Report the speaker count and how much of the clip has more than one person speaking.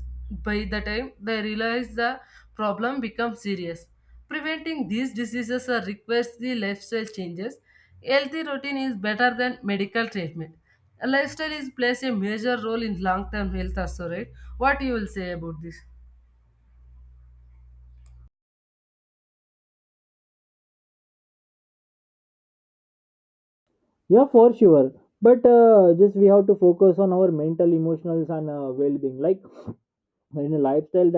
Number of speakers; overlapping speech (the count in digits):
2, no overlap